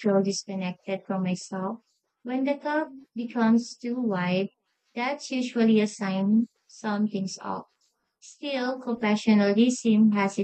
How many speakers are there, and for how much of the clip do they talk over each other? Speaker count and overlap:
1, no overlap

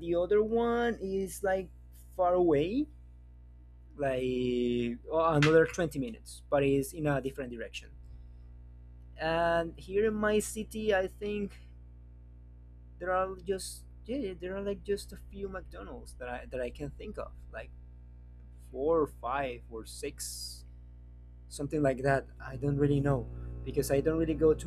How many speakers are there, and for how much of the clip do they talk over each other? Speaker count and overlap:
1, no overlap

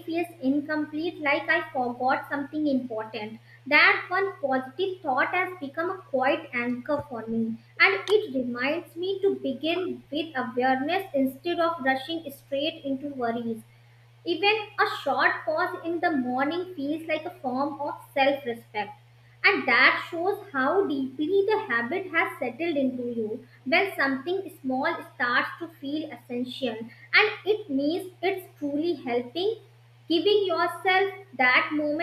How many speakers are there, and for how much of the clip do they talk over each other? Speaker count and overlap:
1, no overlap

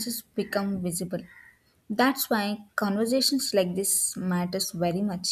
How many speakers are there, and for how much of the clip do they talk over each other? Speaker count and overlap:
1, no overlap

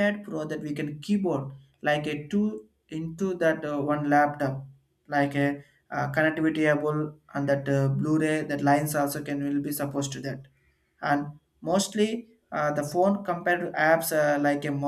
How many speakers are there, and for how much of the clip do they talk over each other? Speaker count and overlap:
1, no overlap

